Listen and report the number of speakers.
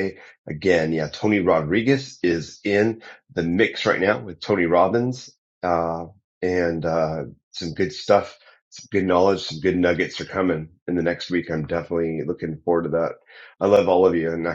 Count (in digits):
1